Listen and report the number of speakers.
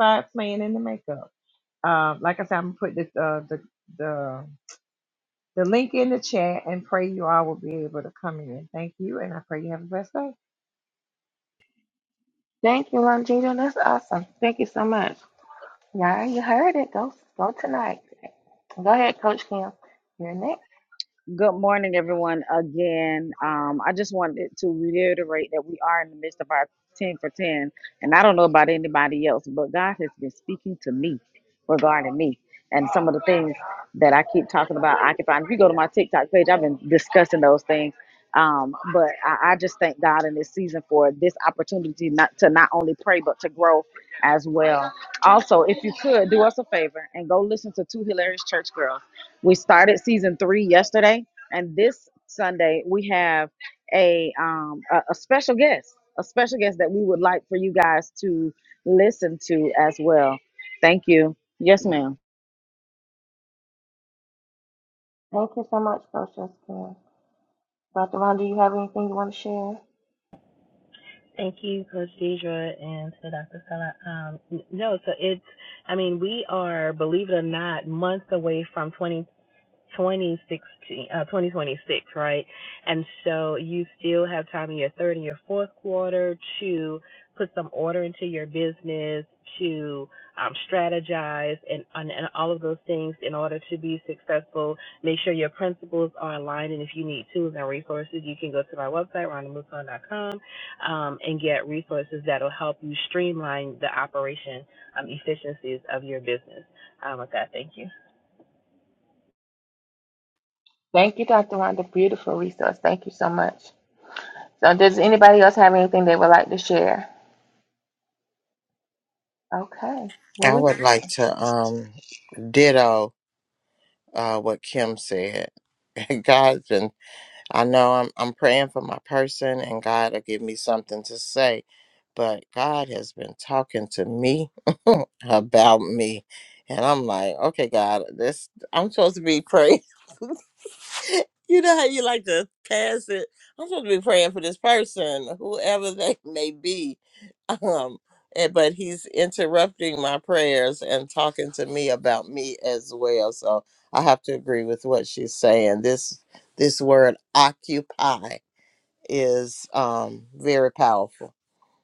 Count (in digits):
5